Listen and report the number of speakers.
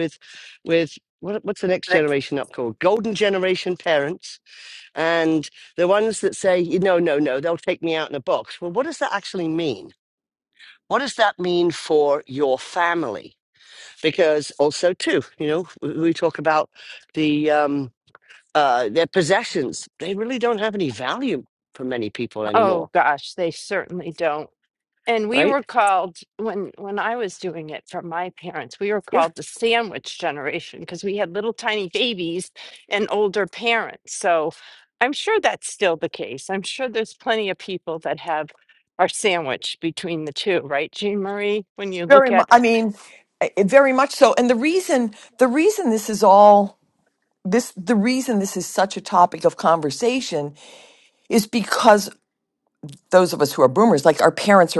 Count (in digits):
3